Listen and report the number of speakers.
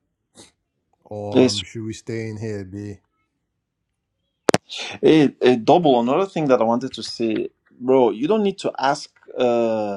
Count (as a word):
two